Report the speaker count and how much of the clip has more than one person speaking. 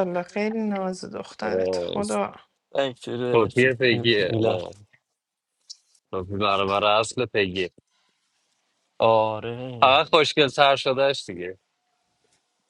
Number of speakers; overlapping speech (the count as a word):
three, about 12%